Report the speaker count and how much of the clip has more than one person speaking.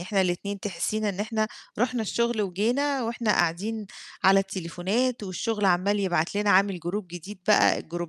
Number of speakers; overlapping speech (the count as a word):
one, no overlap